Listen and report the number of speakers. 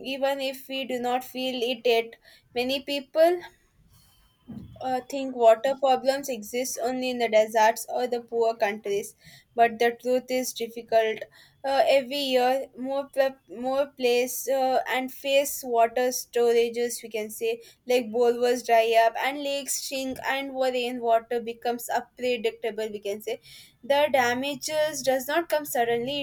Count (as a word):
one